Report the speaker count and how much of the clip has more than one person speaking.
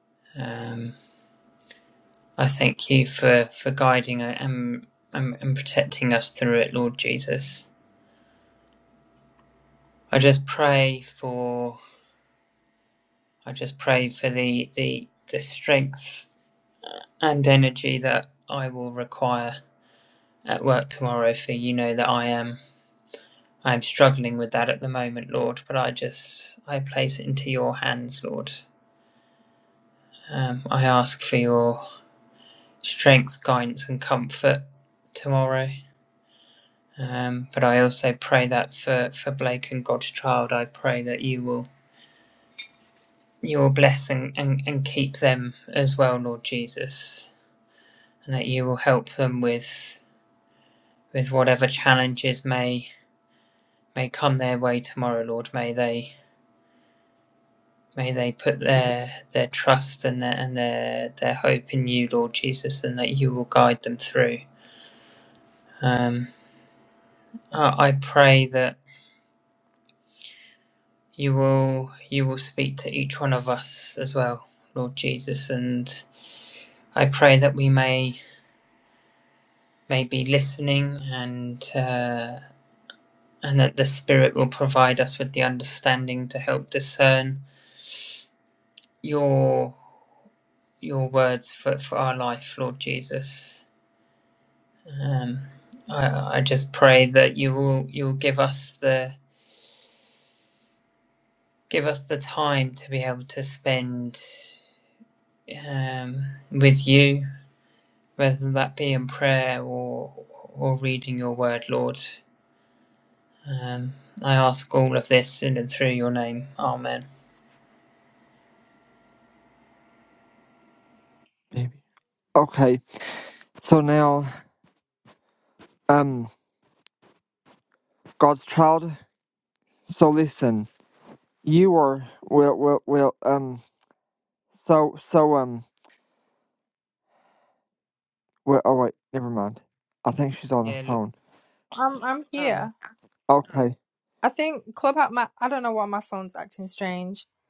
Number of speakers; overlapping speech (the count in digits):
3, under 1%